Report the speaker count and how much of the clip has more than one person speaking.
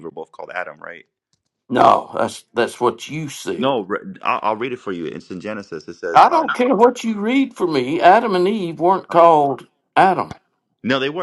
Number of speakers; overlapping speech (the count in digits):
2, about 5%